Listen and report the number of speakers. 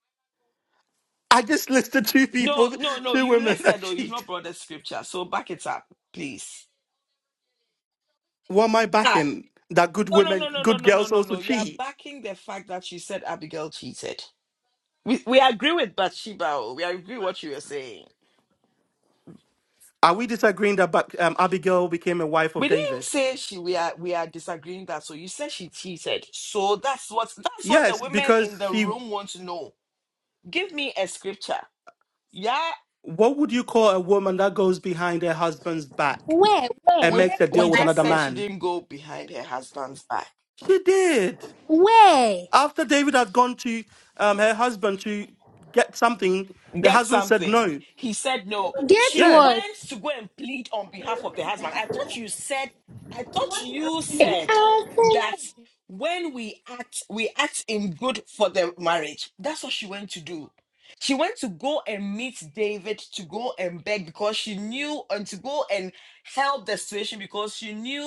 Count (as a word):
three